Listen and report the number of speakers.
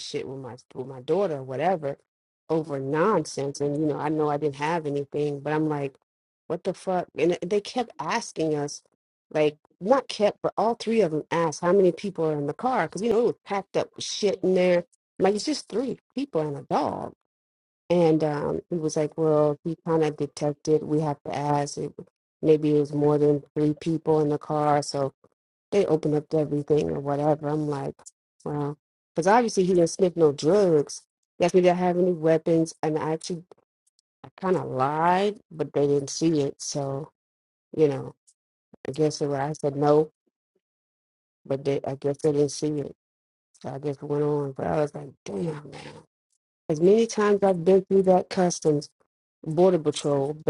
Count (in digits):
1